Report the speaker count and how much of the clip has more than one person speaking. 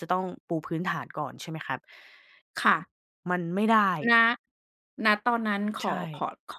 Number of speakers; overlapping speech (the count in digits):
2, about 2%